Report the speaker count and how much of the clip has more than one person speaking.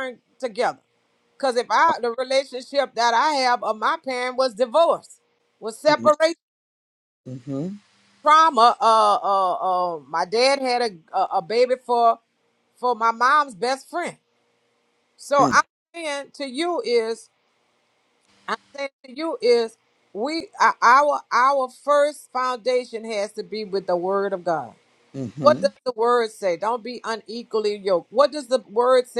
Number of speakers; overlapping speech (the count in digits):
2, about 2%